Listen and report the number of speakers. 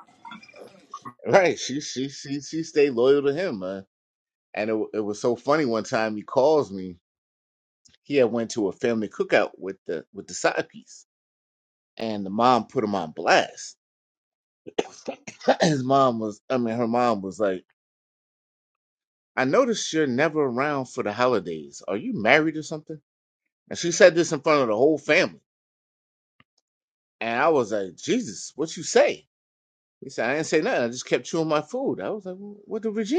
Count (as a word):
one